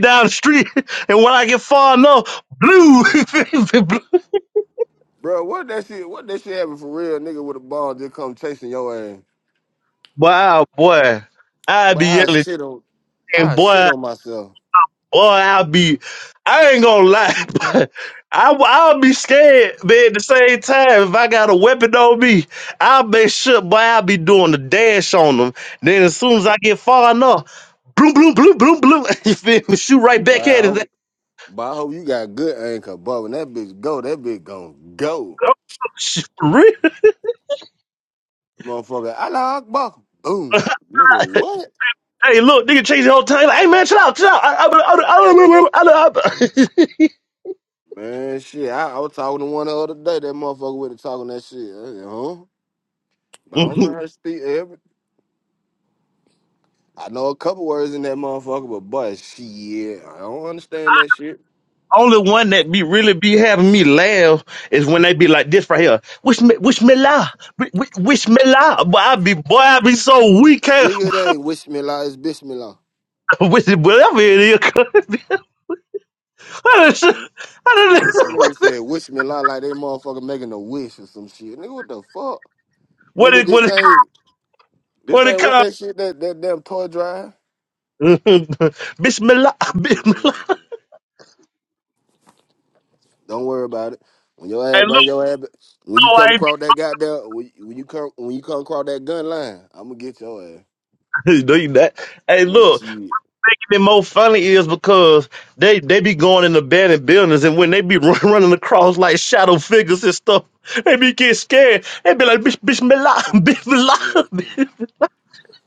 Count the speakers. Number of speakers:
2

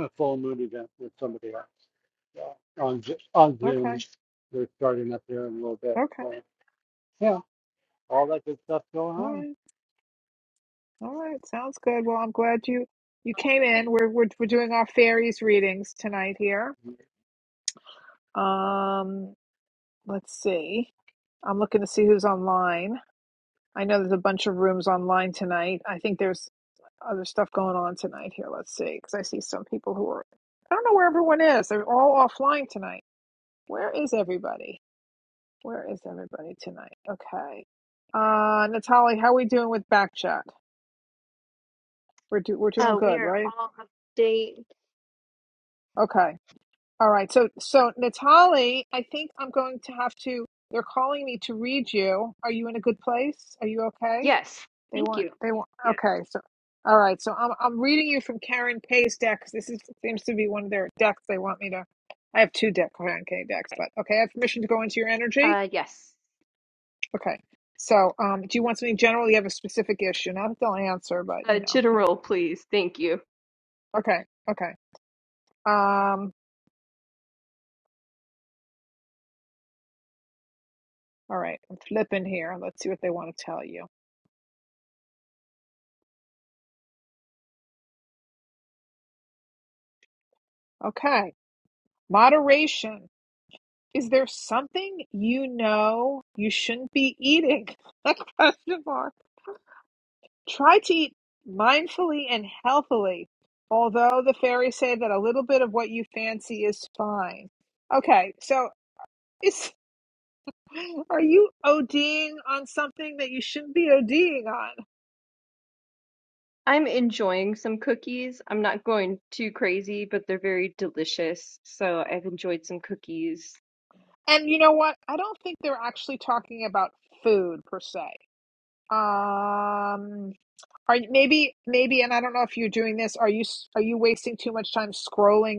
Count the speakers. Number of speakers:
3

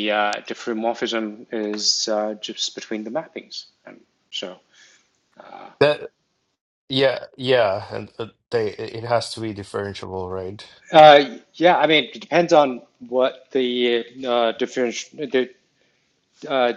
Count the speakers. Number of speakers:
2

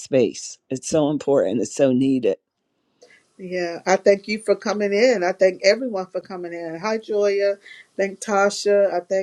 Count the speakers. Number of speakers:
2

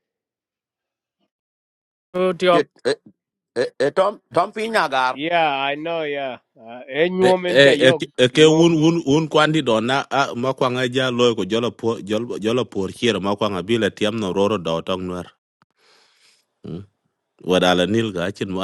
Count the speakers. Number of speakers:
3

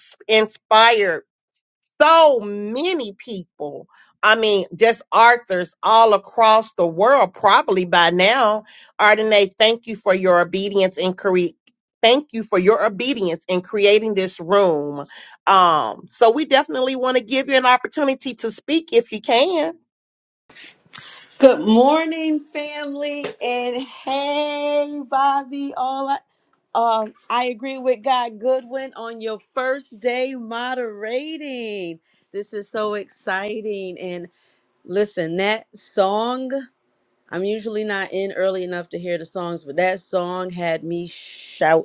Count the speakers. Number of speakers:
2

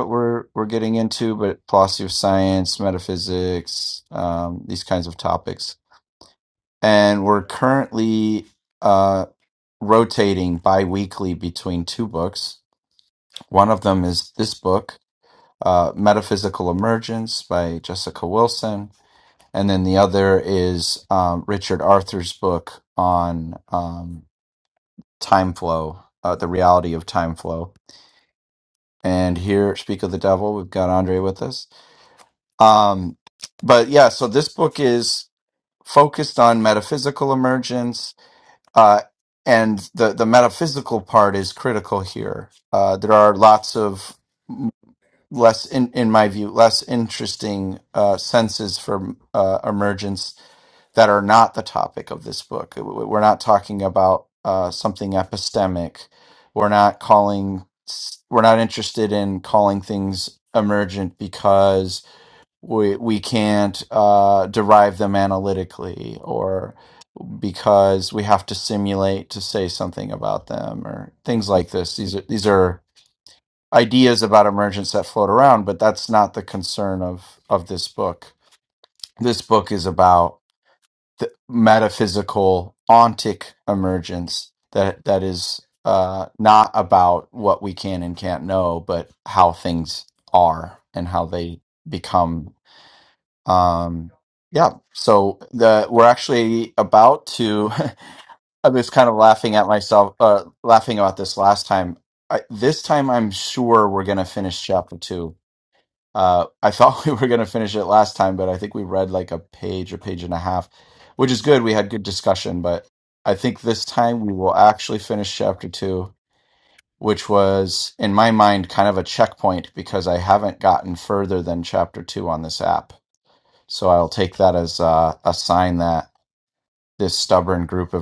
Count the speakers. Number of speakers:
1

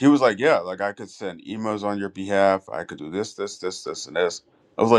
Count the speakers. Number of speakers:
1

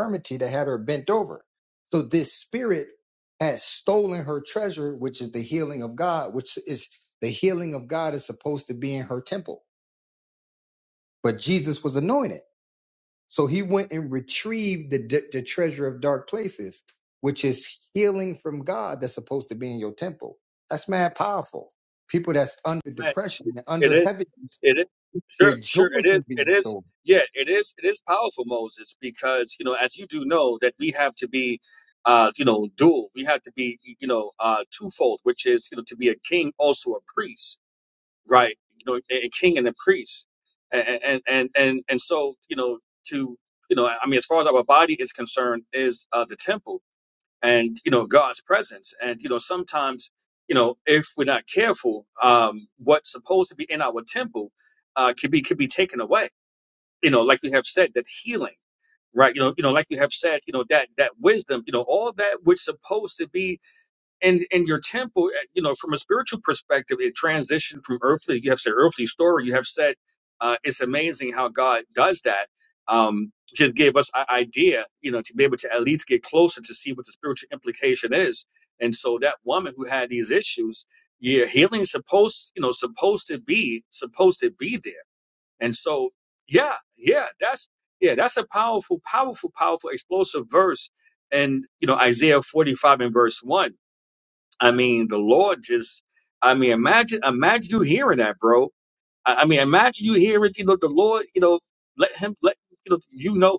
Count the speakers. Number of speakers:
2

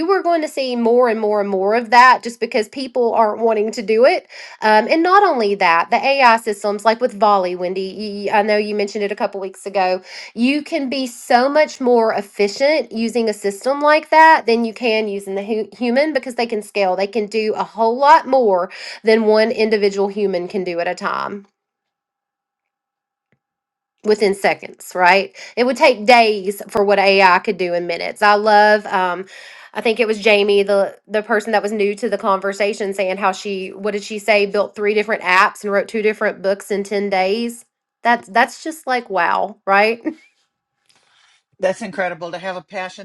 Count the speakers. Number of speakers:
2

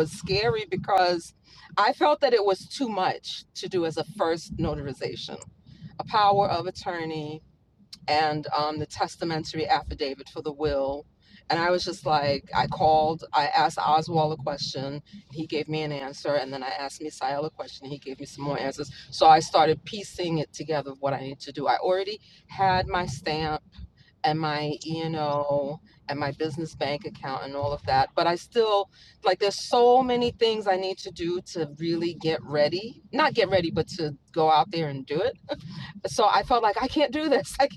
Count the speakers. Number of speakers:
1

